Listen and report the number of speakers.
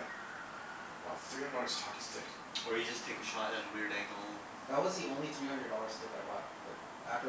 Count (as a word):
three